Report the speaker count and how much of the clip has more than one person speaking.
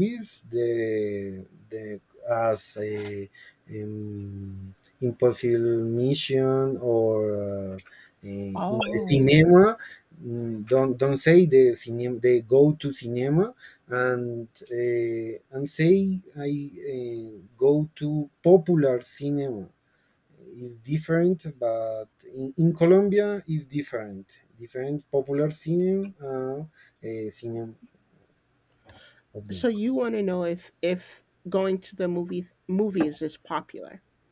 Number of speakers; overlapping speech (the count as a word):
two, about 3%